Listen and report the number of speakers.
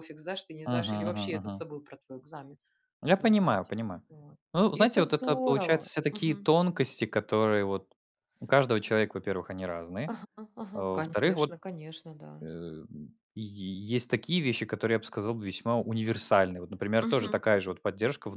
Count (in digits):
2